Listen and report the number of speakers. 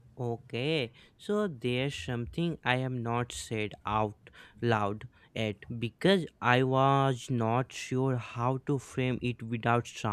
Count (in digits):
1